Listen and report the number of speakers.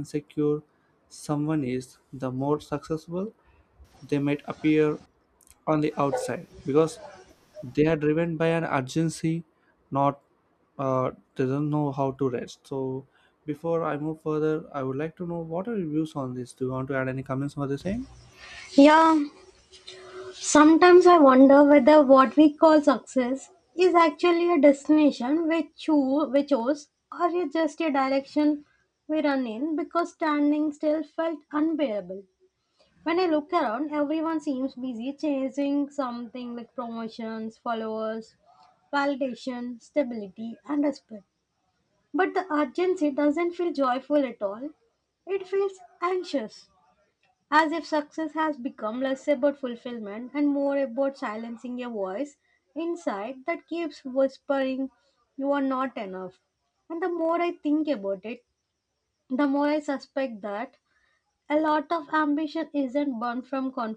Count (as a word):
two